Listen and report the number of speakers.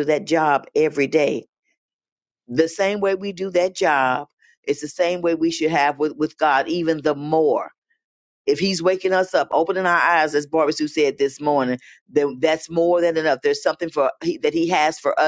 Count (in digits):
1